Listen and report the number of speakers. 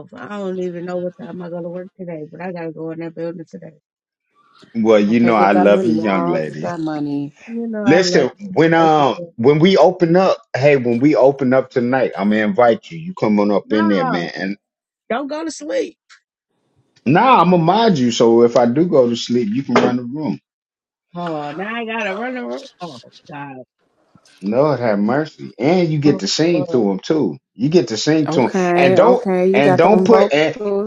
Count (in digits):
3